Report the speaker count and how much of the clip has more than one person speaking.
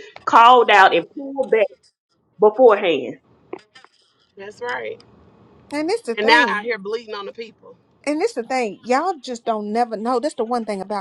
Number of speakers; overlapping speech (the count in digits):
3, about 4%